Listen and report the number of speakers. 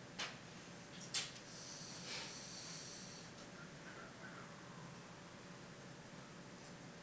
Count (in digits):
0